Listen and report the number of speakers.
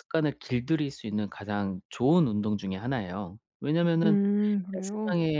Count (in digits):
2